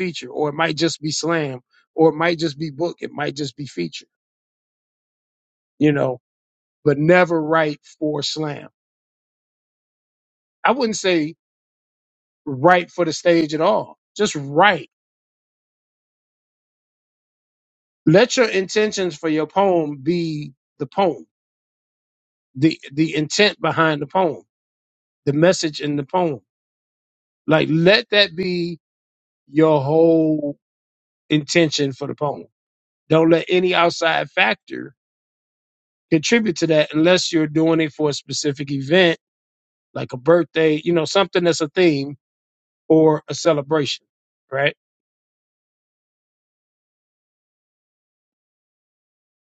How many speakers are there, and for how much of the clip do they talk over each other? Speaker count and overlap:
1, no overlap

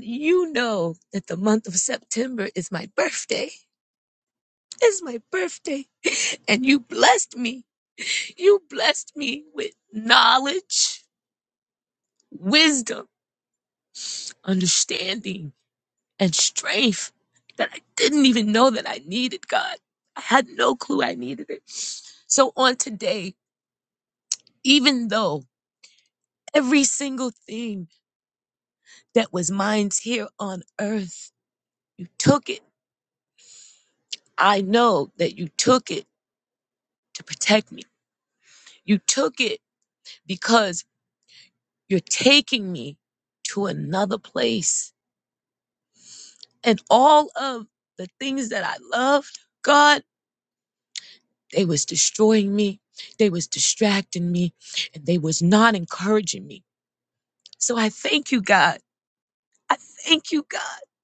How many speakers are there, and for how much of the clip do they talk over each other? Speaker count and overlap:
1, no overlap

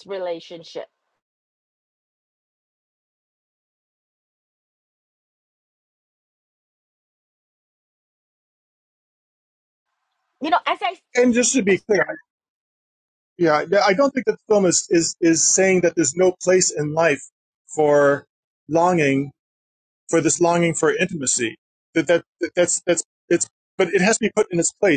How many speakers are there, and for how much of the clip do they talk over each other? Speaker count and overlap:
2, under 1%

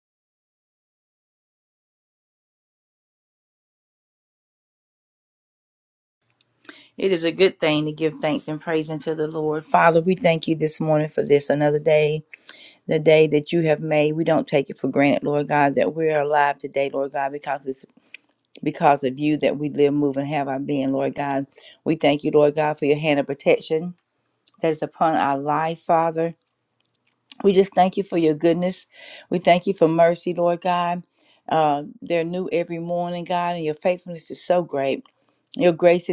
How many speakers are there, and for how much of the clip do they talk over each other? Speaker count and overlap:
1, no overlap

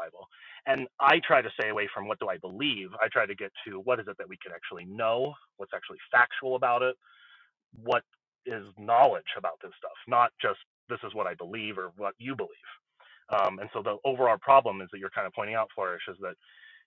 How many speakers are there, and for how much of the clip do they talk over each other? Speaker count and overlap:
1, no overlap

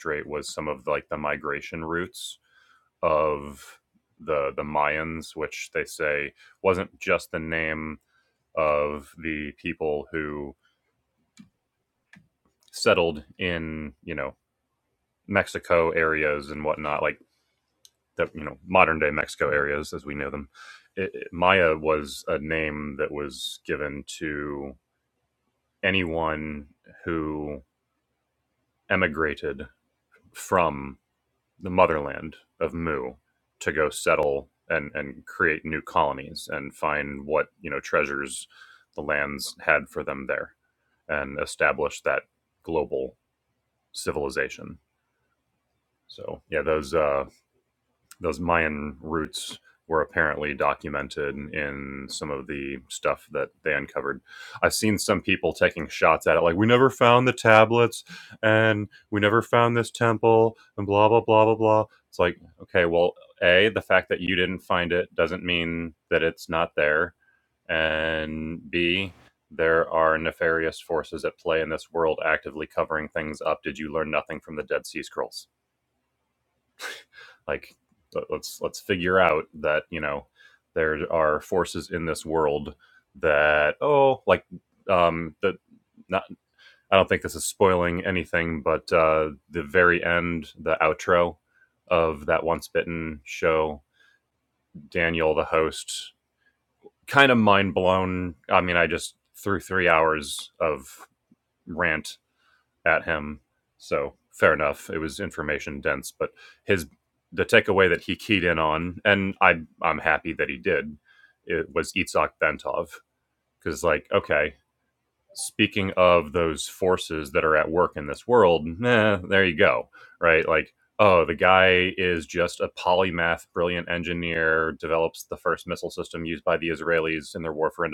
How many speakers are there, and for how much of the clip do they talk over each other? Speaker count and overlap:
1, no overlap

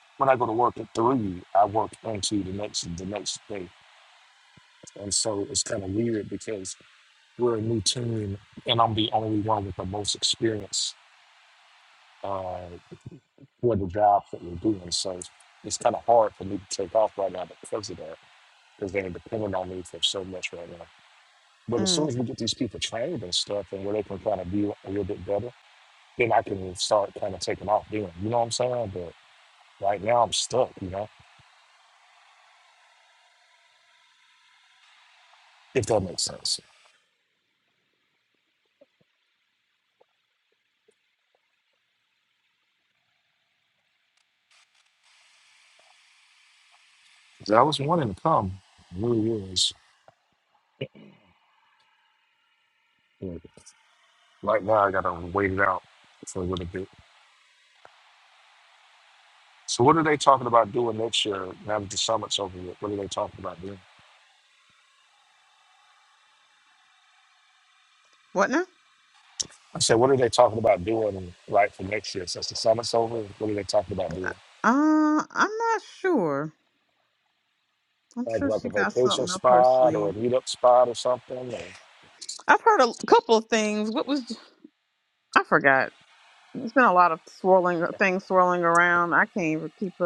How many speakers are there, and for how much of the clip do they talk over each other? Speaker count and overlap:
2, about 2%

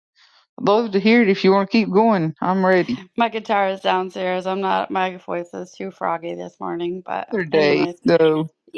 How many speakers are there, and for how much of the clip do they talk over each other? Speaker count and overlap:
2, about 7%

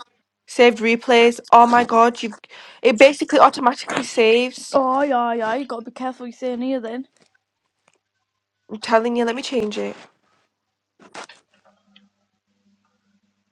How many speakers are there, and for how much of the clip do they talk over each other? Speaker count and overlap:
2, no overlap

